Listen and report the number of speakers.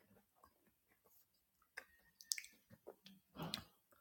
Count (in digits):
0